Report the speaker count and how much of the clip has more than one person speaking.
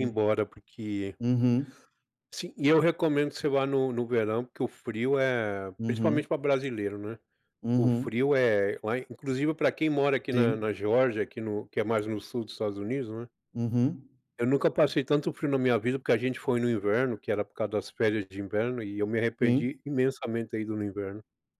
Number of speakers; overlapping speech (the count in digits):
2, about 7%